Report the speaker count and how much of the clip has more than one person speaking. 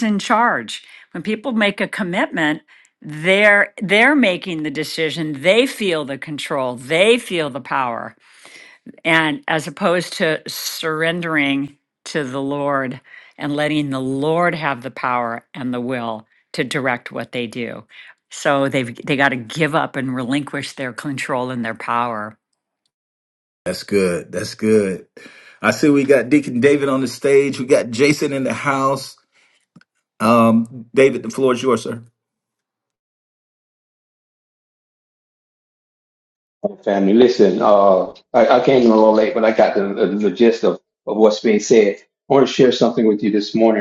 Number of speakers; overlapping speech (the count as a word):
three, no overlap